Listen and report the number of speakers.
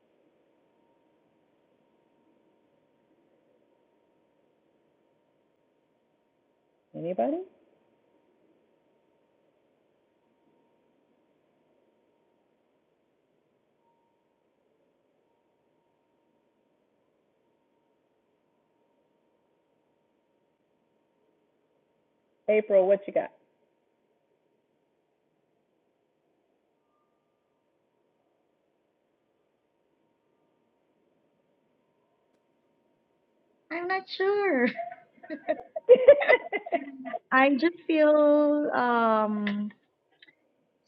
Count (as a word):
two